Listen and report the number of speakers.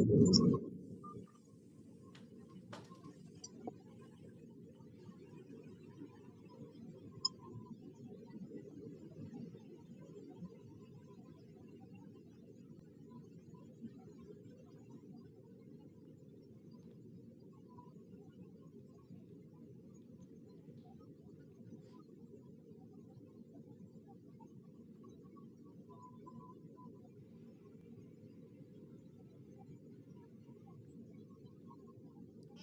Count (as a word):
zero